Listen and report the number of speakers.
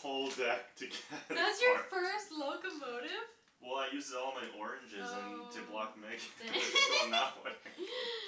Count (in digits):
2